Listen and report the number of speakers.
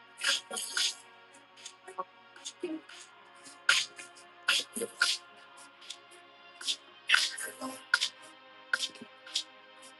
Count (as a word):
zero